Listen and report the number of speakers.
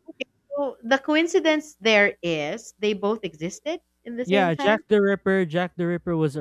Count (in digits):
2